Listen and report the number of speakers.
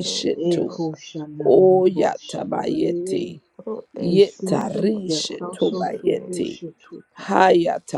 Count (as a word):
three